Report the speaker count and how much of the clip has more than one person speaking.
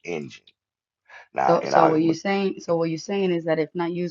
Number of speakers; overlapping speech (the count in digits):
2, about 17%